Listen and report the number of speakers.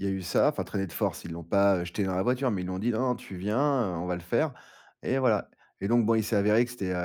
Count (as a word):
one